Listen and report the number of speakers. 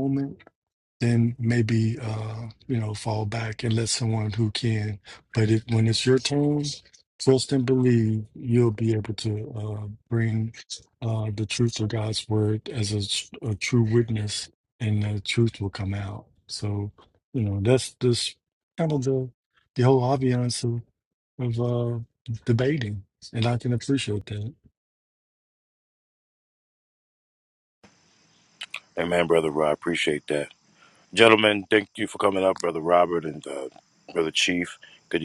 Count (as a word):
two